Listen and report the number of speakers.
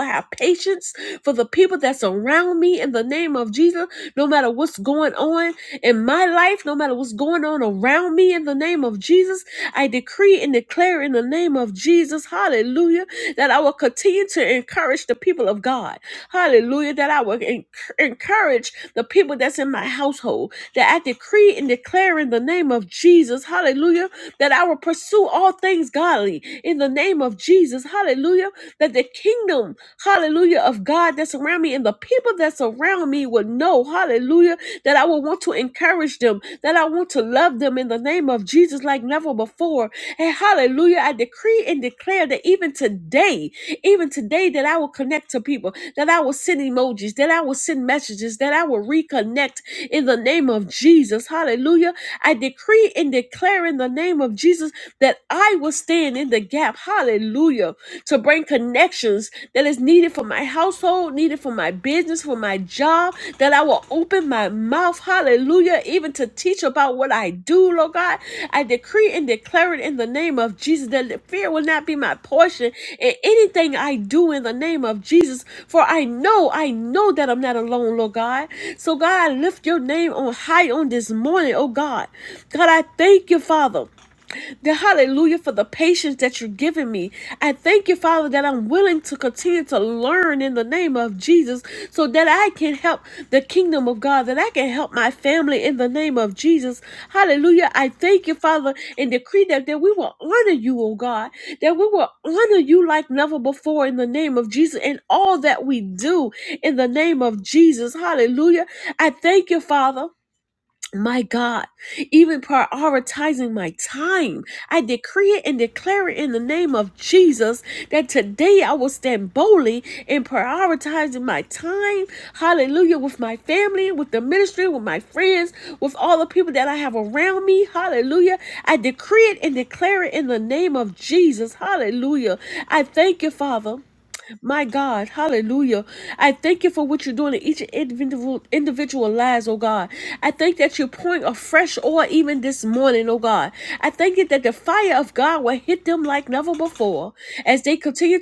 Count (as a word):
one